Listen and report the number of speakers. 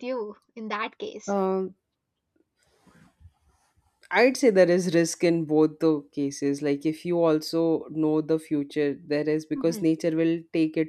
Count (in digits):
2